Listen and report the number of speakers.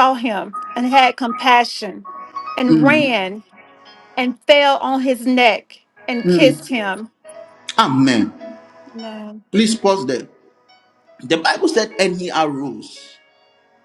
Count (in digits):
2